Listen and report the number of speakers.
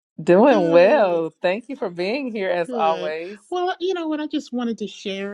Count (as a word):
two